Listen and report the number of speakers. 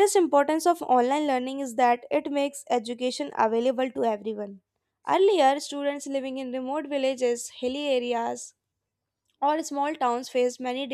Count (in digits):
1